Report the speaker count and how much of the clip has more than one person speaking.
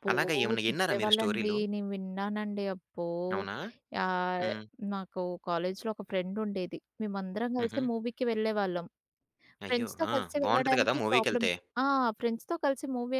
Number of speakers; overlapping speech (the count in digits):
2, about 25%